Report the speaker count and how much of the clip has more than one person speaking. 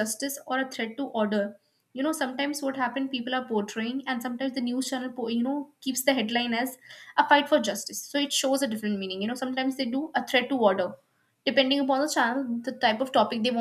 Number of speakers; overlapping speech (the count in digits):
1, no overlap